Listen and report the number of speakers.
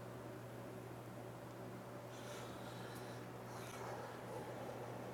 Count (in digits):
0